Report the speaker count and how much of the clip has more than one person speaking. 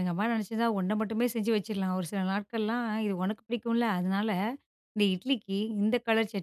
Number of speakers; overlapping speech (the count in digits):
1, no overlap